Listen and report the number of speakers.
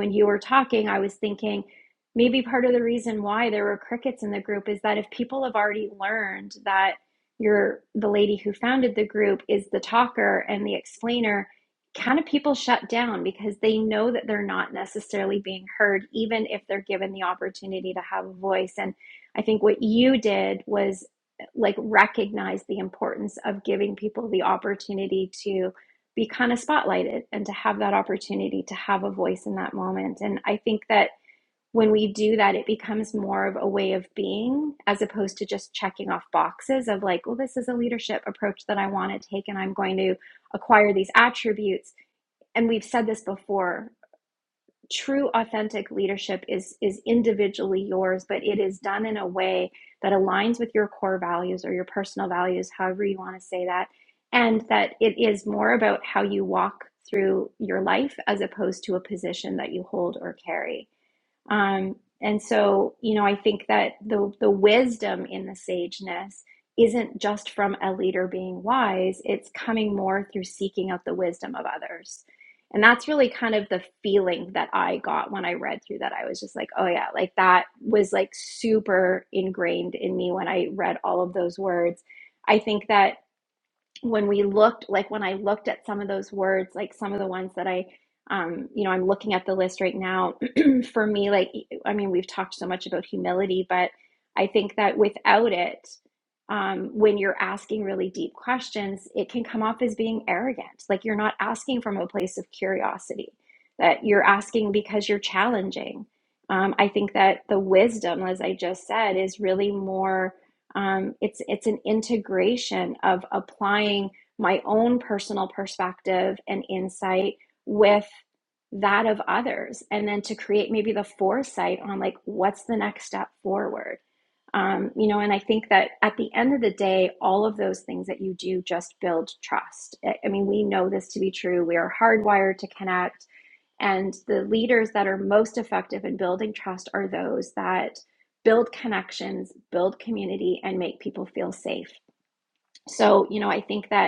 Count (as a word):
one